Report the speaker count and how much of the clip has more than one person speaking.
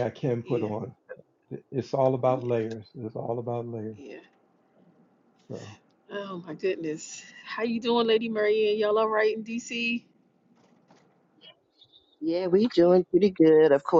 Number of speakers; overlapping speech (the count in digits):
3, about 3%